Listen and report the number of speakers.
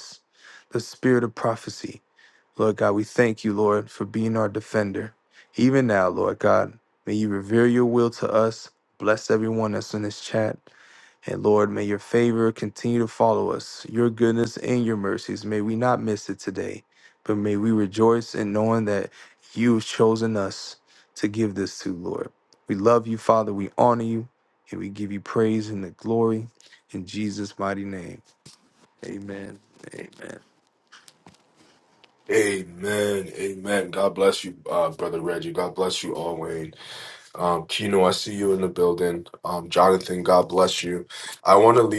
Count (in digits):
2